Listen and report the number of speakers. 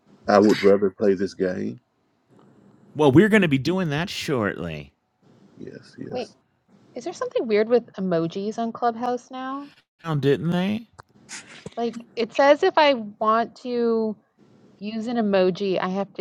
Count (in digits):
3